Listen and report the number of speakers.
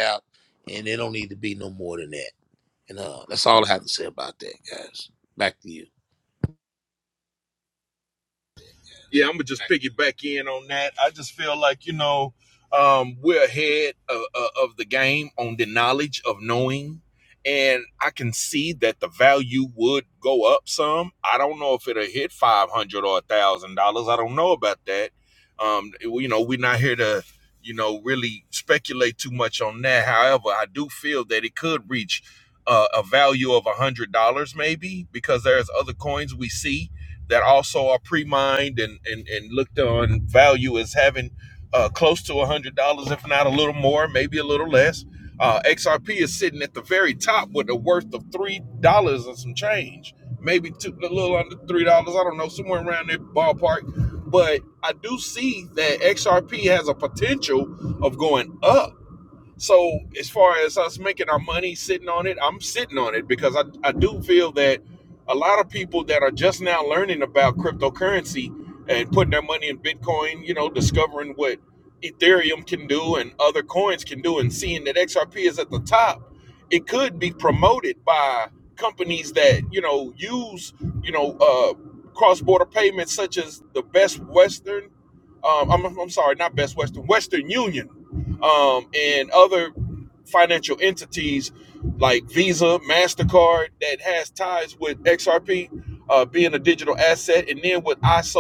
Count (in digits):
2